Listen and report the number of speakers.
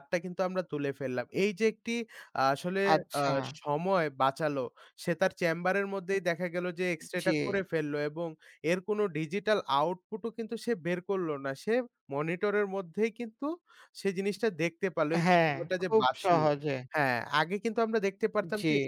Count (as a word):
two